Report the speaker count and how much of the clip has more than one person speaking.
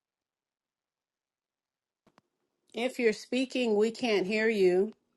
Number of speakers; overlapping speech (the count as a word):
one, no overlap